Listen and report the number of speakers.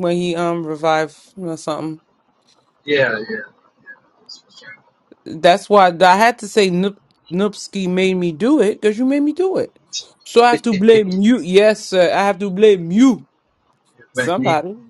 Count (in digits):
2